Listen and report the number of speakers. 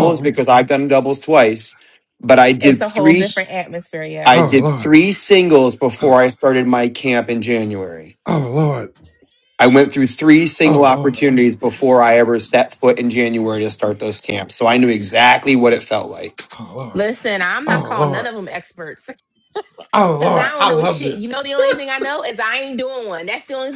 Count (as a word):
three